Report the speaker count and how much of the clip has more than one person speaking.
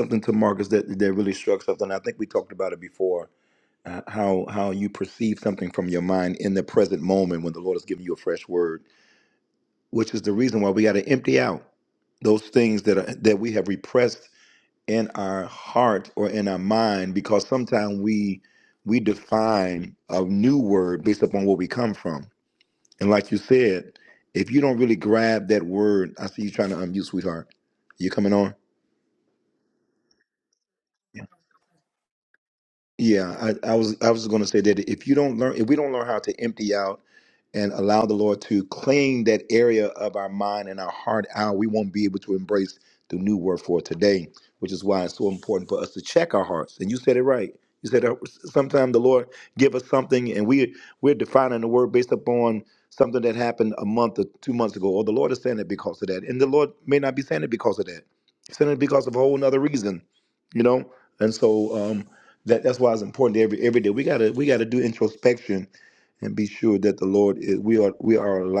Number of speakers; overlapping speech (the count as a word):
one, no overlap